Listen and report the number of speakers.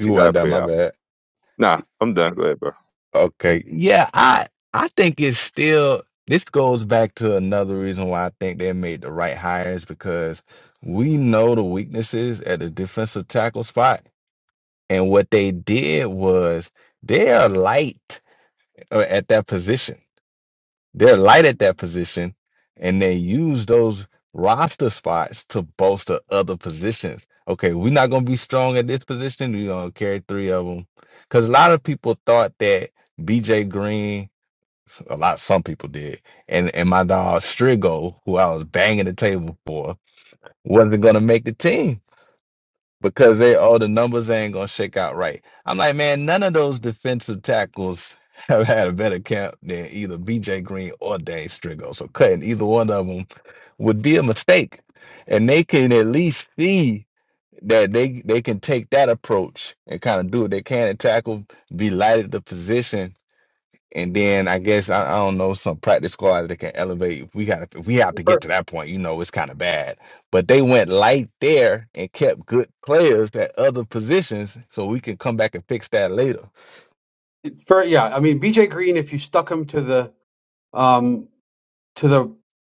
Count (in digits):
3